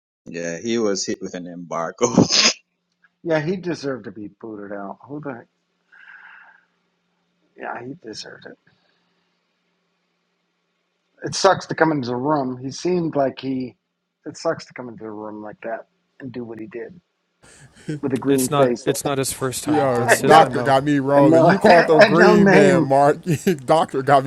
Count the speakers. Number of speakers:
4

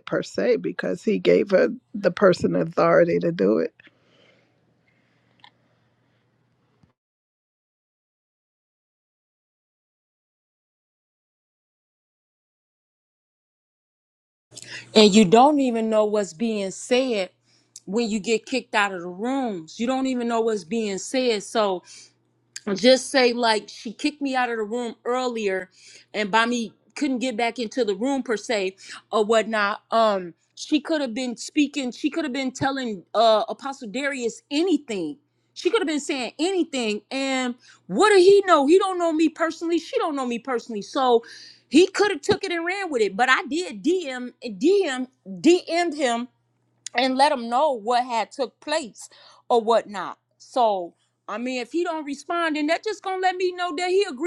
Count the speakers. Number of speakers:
2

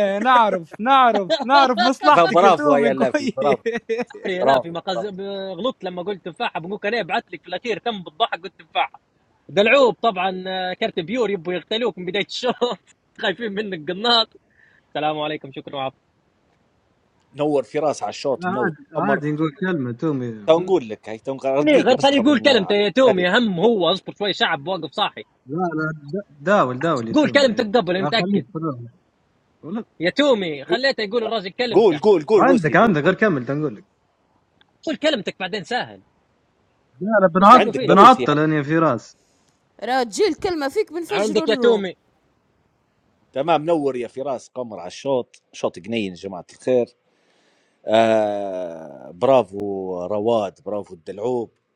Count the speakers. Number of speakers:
5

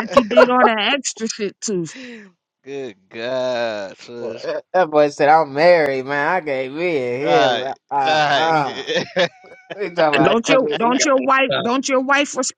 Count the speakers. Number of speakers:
3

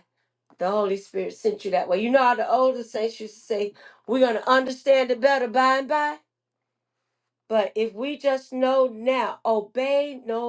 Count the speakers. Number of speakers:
1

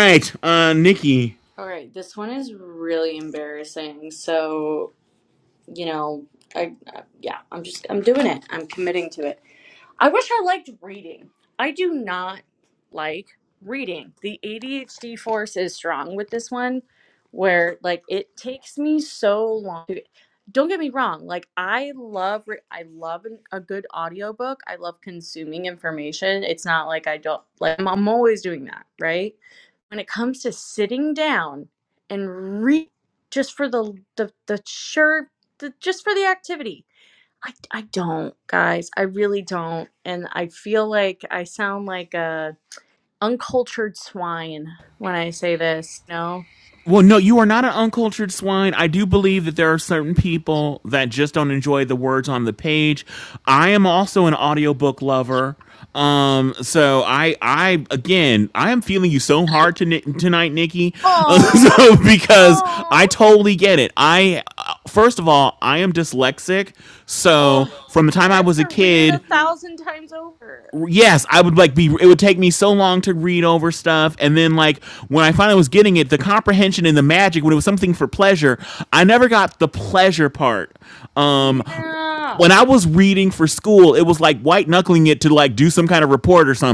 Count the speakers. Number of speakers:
2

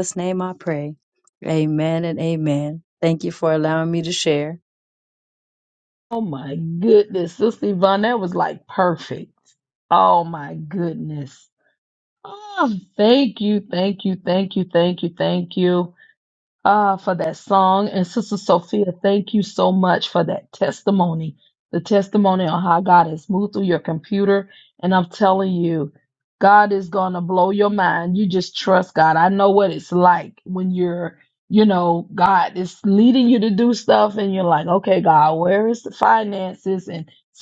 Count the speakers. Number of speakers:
2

